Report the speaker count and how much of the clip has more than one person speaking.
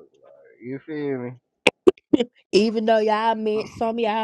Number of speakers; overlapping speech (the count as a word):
two, no overlap